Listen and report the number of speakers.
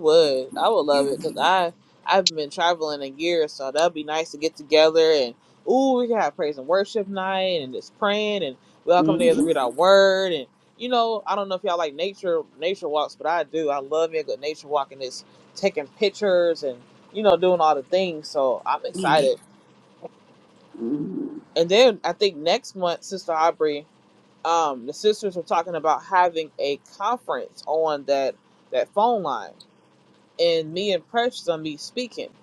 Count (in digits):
2